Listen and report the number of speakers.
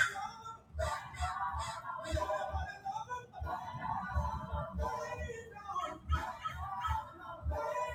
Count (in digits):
0